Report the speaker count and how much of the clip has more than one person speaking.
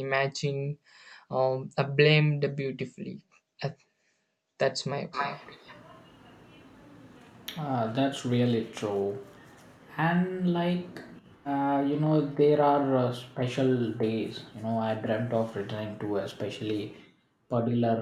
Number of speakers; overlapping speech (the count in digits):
2, no overlap